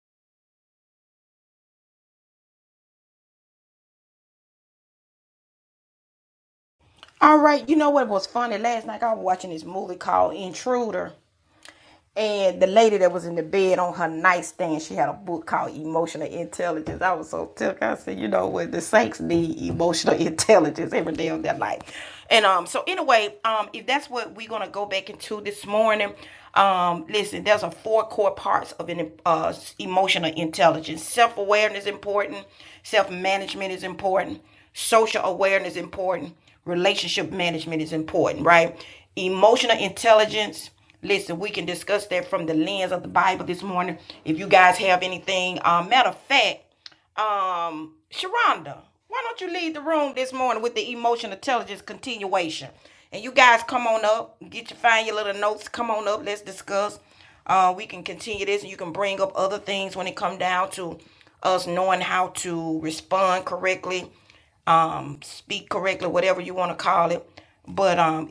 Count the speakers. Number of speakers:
one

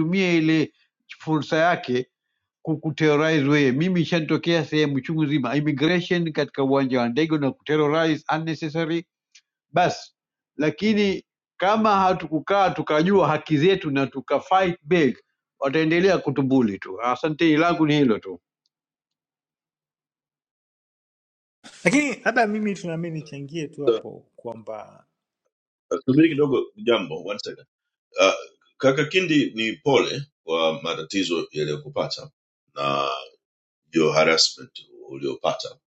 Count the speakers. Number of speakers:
three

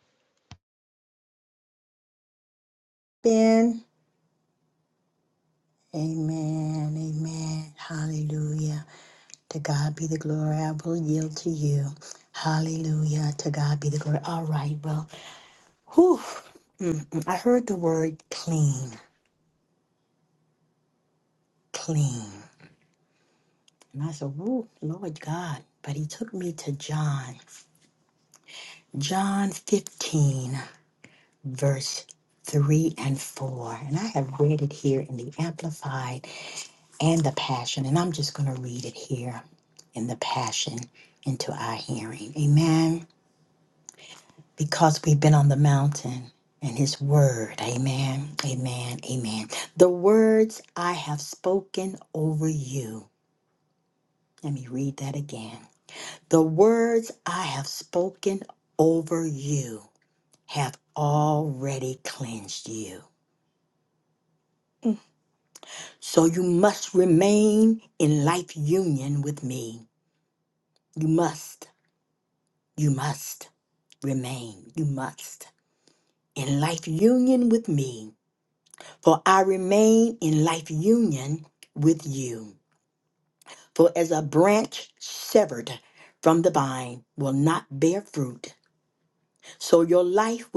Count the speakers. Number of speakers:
one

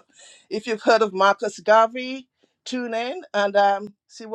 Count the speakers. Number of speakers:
one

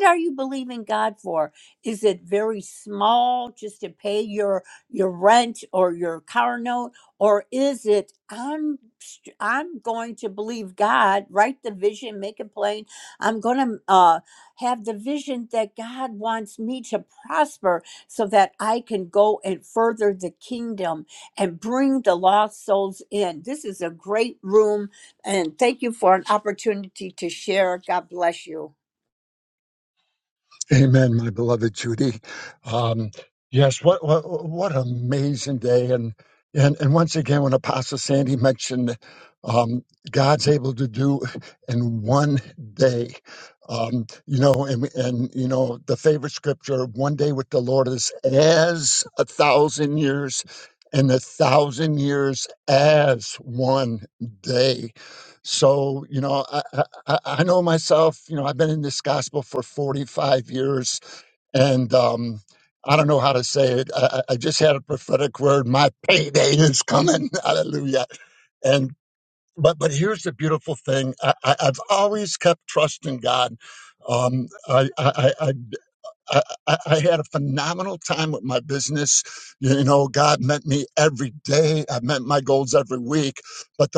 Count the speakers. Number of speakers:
two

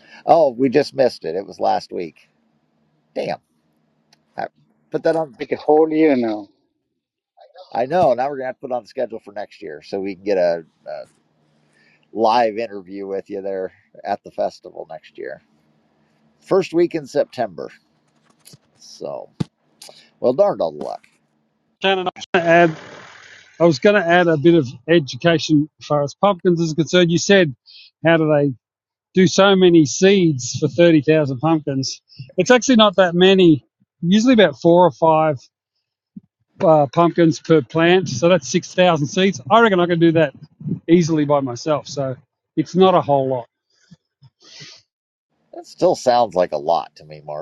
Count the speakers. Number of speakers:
three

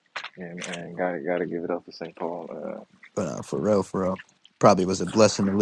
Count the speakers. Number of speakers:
two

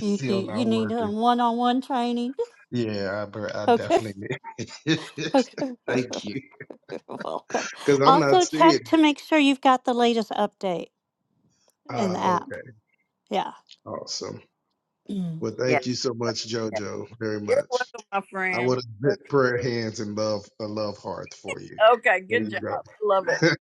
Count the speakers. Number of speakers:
three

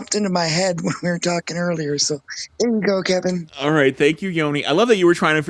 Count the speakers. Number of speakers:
two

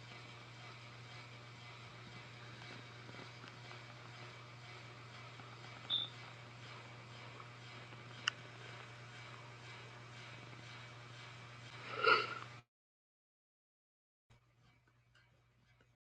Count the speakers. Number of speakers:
zero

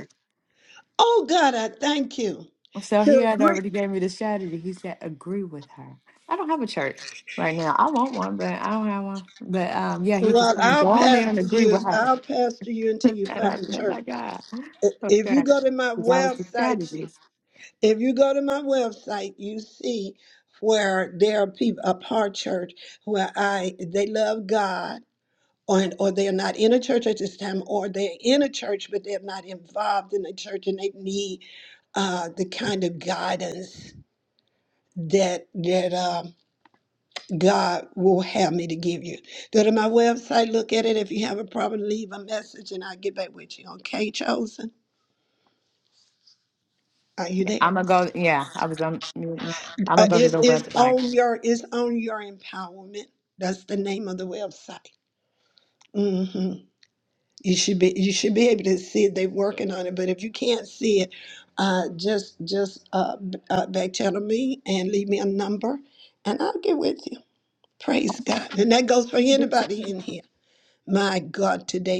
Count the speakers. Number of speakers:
two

